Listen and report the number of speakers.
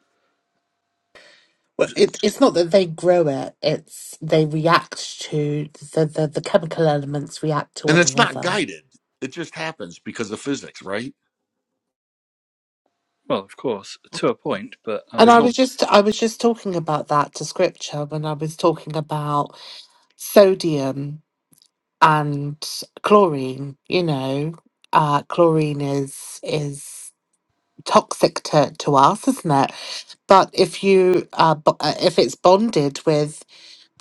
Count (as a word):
three